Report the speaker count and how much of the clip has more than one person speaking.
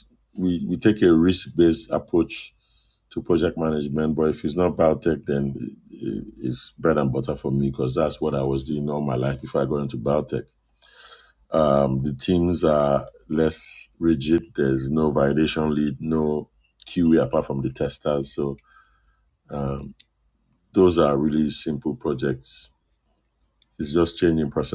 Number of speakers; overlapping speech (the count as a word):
one, no overlap